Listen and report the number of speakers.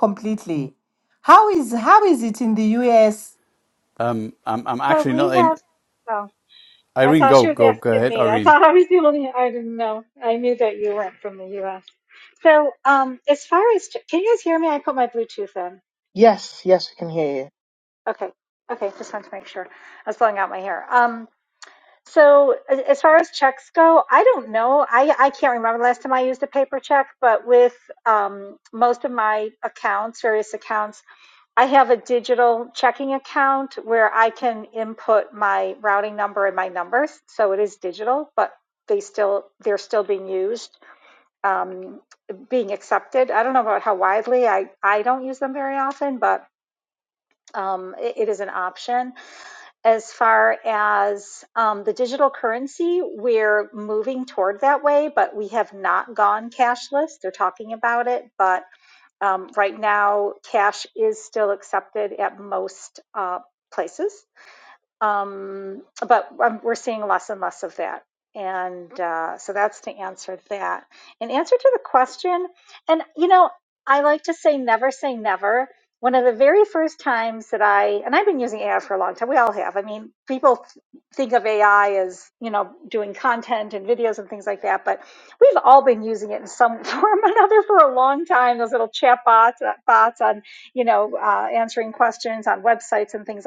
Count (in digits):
4